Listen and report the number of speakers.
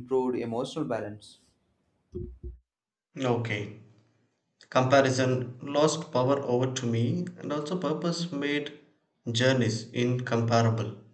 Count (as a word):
two